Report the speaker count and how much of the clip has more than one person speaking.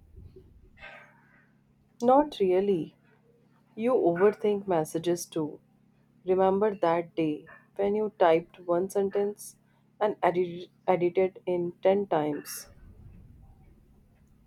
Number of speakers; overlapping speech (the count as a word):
one, no overlap